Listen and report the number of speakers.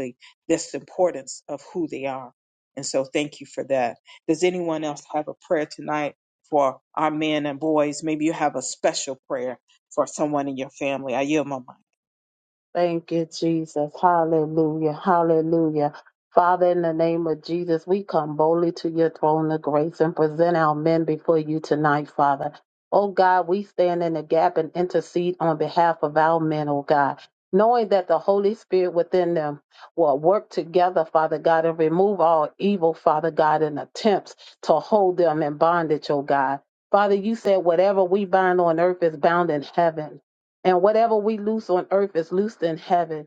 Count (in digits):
2